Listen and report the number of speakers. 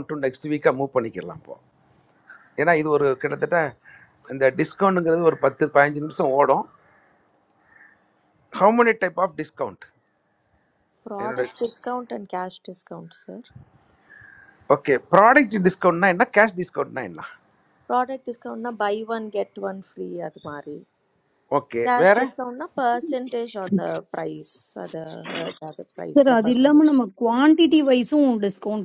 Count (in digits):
3